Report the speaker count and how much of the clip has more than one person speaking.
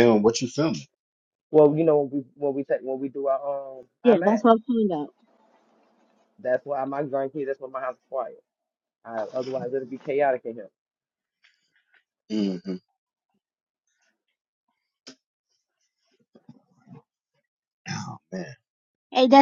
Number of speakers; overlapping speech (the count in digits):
3, about 2%